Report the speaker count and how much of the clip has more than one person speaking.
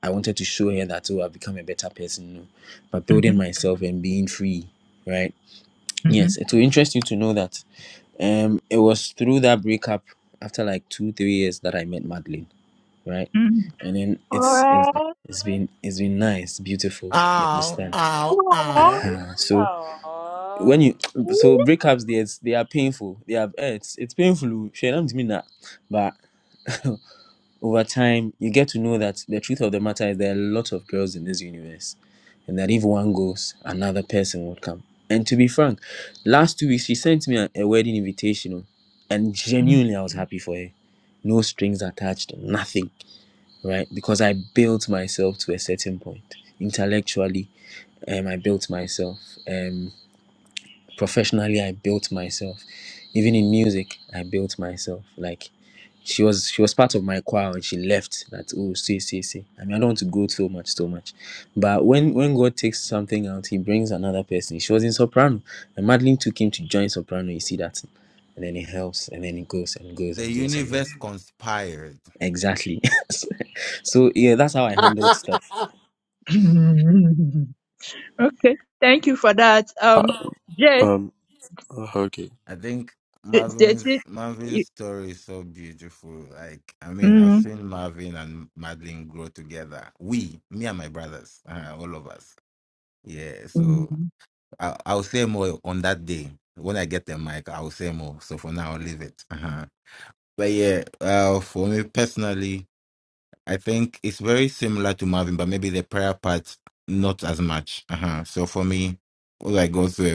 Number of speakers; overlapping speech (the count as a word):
five, about 4%